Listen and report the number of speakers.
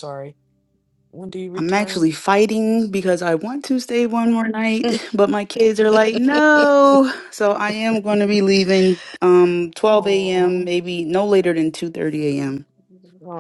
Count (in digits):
2